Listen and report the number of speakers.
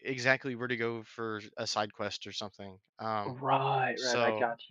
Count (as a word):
two